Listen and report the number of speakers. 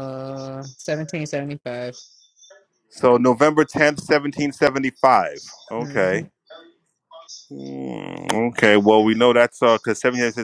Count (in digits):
2